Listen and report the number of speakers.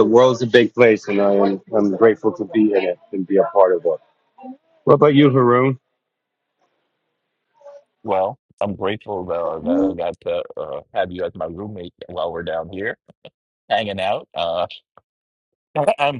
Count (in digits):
2